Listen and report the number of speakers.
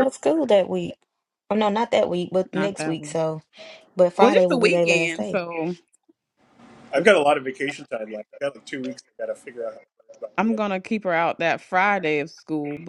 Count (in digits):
3